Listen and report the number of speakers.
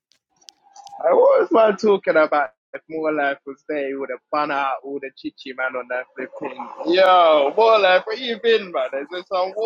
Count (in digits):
1